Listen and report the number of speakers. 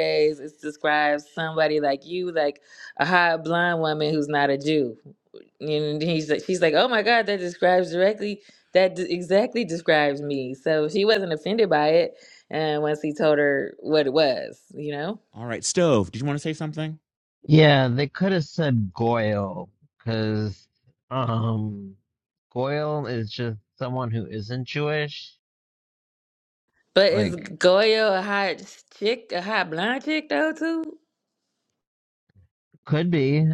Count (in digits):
3